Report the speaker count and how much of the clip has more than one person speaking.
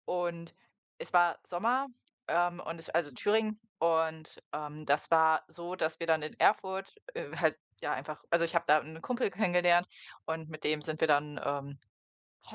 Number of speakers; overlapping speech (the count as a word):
one, no overlap